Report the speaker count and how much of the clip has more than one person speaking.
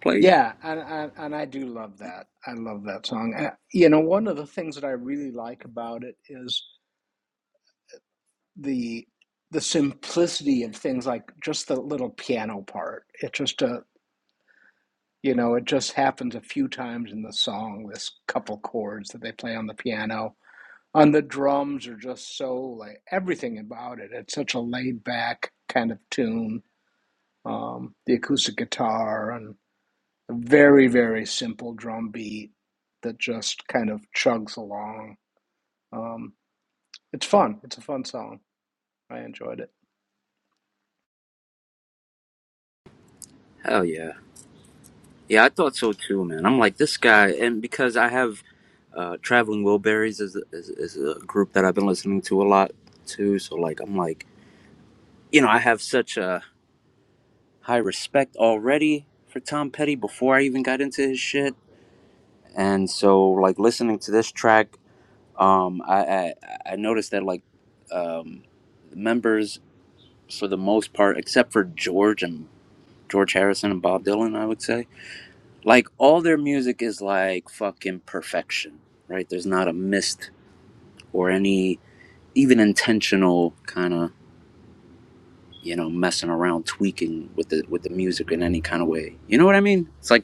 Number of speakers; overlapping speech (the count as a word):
two, under 1%